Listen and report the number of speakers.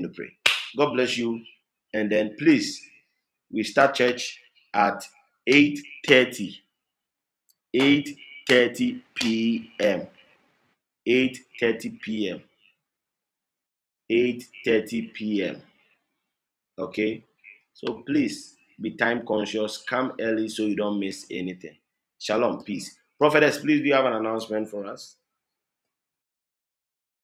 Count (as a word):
one